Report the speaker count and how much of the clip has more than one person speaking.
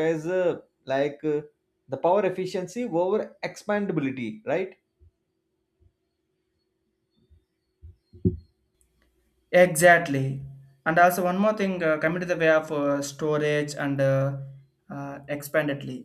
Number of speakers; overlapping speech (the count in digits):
2, no overlap